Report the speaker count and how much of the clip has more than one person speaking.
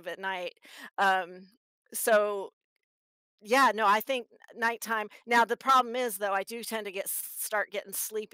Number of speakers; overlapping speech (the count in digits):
1, no overlap